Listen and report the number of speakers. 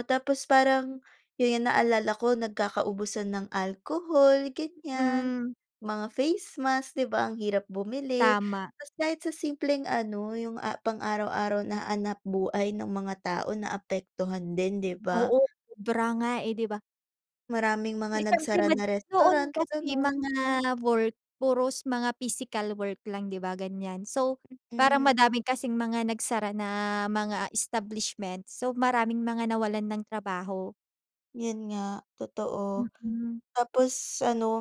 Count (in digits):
2